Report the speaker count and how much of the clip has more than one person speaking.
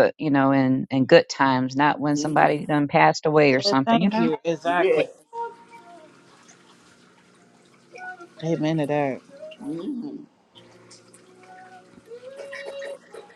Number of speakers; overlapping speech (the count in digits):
3, about 11%